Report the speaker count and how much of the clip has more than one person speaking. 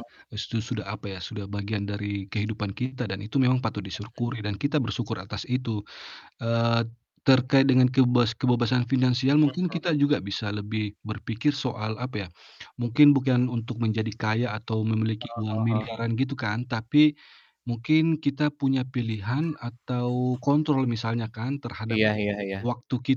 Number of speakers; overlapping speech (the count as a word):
two, about 6%